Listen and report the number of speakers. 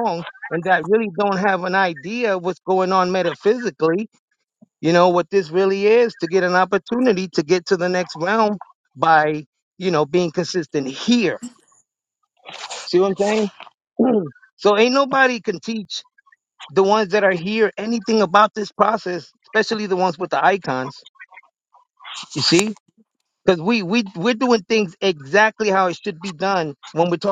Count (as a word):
one